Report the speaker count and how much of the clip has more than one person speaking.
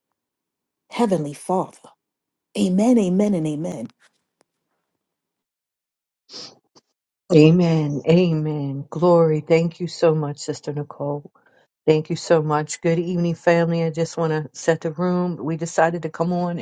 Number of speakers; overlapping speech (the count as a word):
two, no overlap